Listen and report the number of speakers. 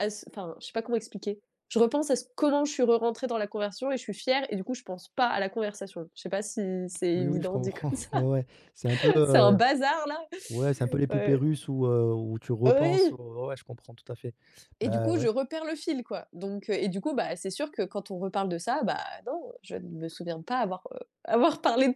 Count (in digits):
2